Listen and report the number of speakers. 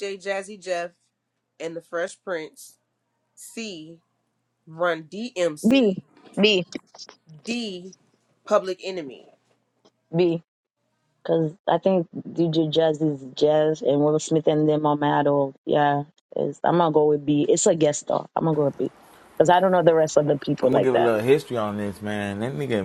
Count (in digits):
3